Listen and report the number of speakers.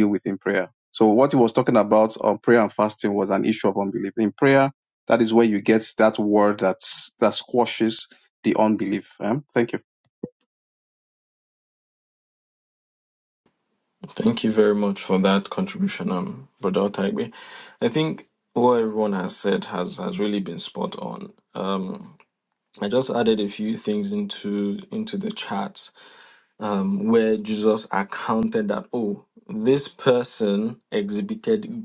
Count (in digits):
2